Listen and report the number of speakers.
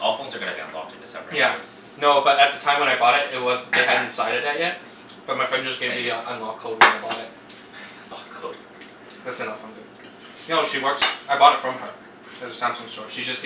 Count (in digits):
2